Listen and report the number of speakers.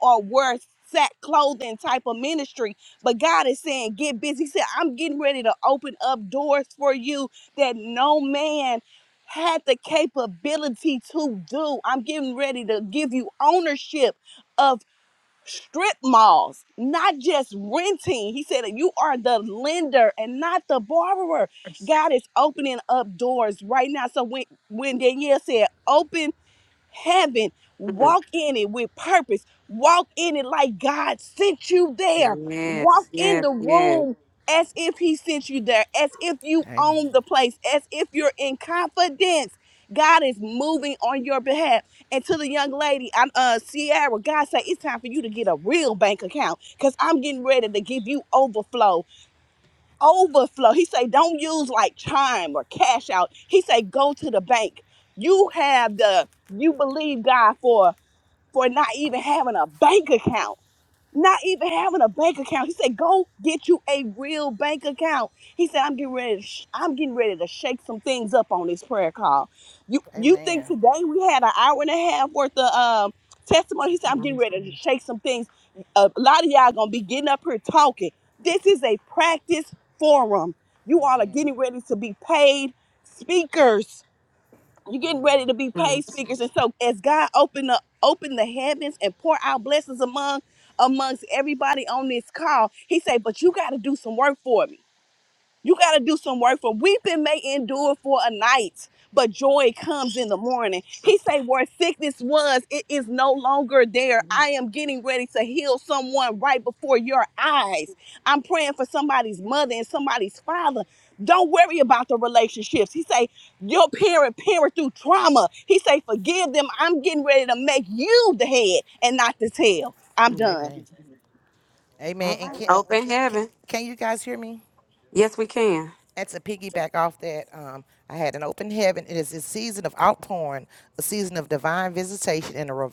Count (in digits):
3